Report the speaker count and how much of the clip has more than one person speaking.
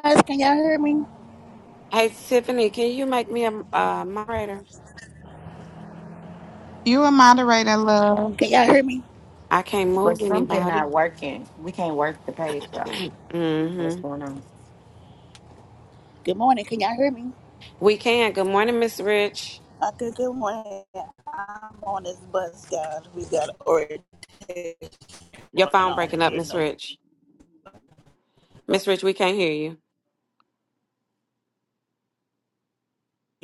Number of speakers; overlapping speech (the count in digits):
4, about 7%